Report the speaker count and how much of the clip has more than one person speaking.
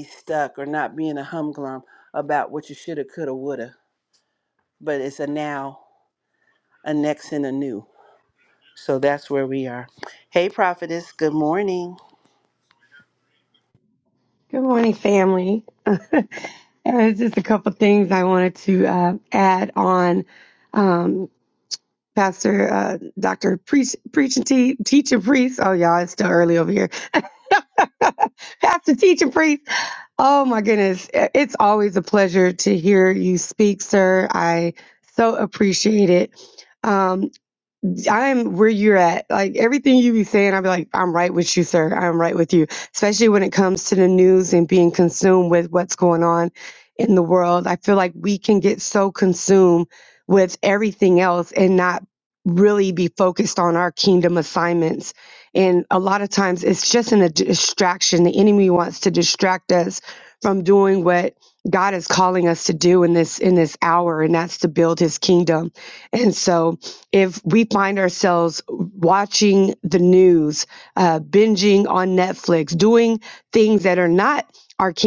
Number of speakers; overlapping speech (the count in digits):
2, no overlap